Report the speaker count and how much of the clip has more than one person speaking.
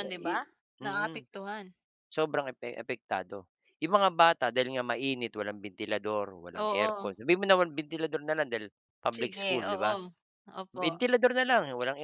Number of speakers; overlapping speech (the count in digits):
2, about 19%